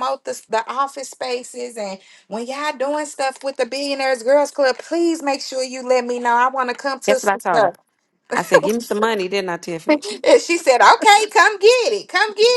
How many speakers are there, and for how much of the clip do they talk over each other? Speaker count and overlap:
2, about 6%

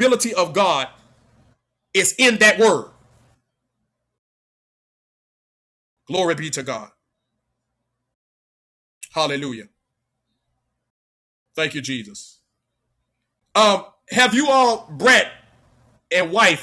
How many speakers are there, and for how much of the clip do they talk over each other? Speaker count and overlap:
1, no overlap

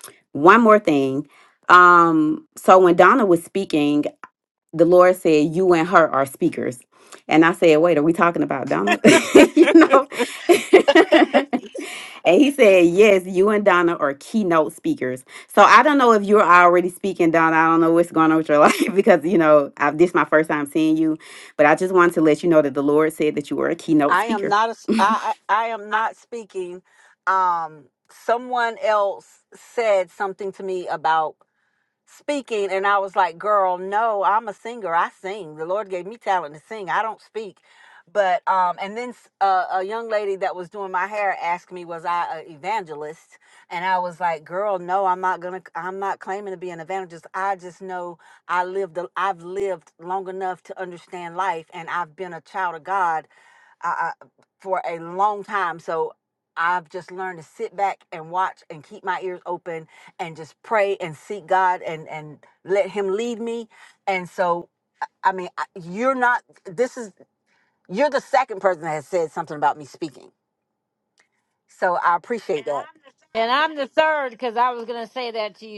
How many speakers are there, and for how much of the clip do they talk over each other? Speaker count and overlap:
3, about 1%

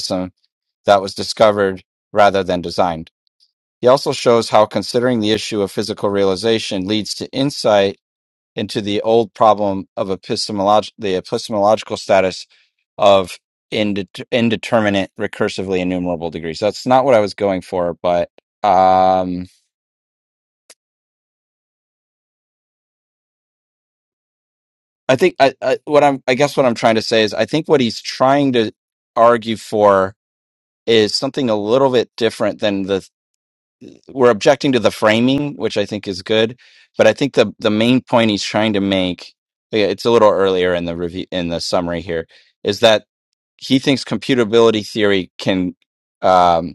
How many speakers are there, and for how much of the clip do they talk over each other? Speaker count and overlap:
1, no overlap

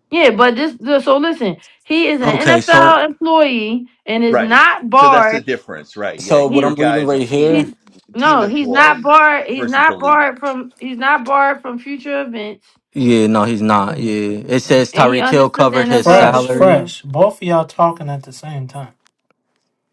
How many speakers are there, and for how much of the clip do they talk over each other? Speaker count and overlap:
4, about 32%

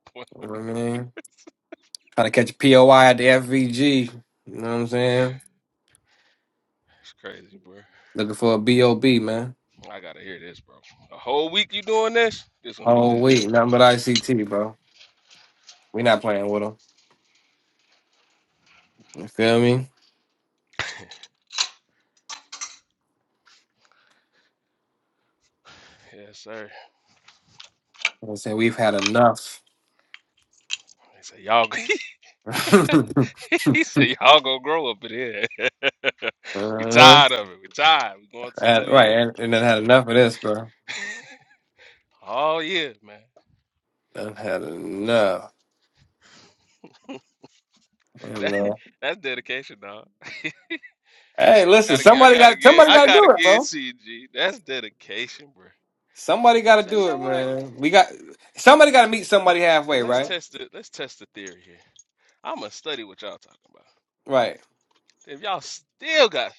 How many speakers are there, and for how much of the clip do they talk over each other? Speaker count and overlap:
2, about 6%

